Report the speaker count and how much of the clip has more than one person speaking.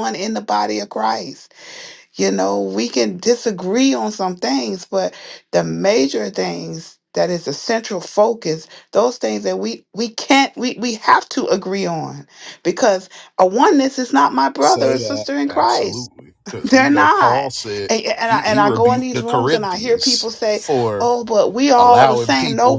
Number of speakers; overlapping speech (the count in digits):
2, about 22%